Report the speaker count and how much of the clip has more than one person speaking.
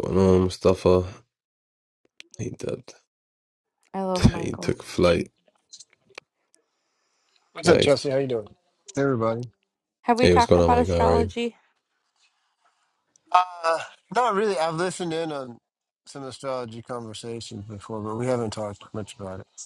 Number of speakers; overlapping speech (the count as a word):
three, about 9%